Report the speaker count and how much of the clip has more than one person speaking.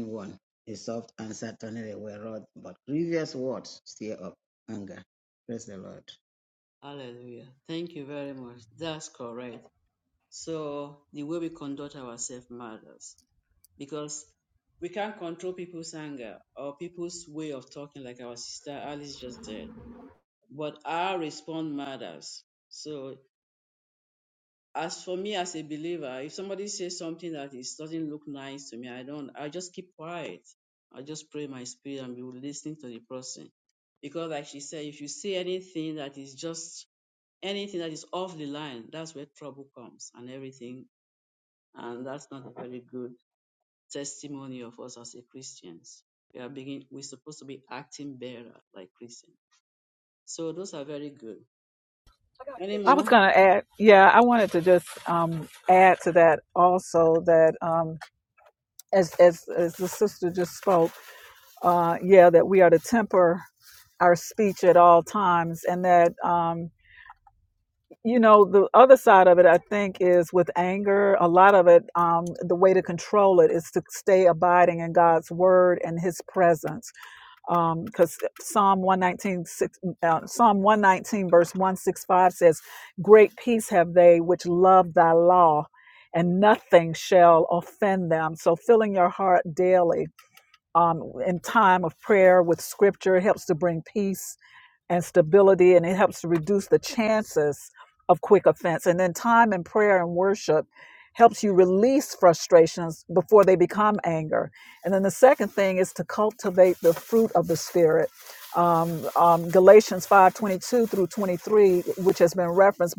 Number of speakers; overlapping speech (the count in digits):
3, under 1%